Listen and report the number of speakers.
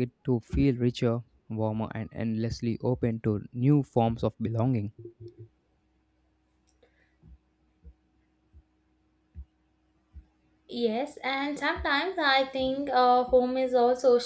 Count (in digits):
2